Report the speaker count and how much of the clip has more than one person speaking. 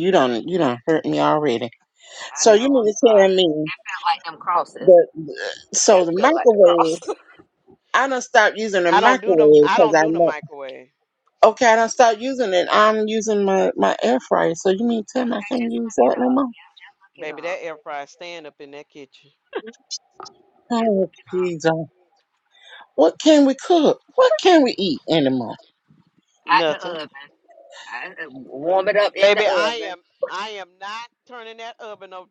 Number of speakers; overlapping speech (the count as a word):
three, about 22%